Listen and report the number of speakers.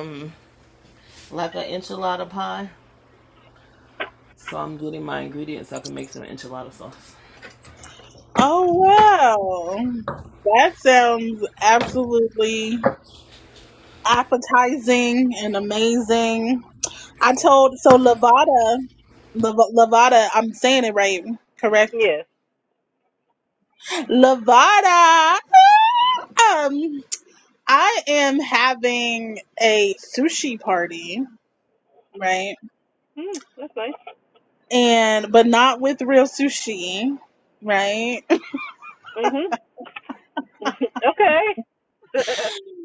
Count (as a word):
three